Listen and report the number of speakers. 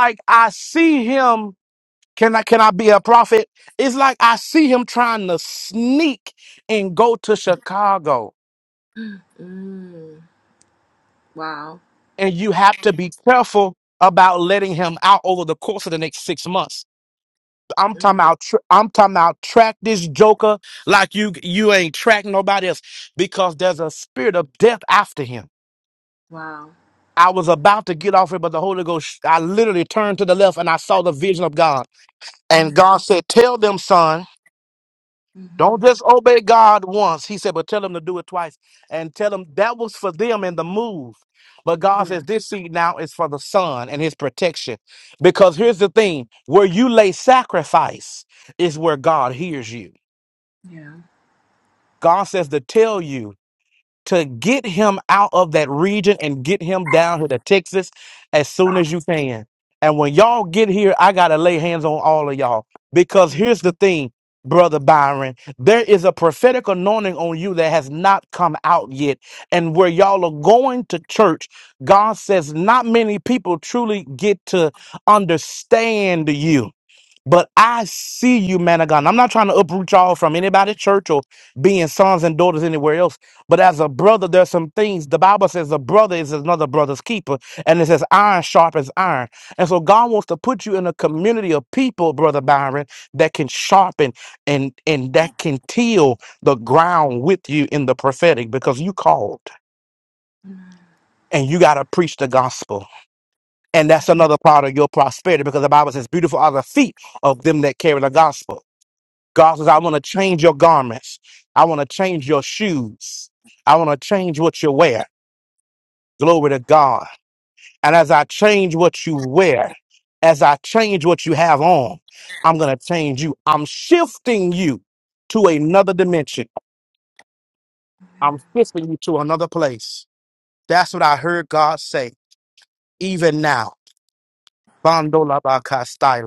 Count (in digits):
2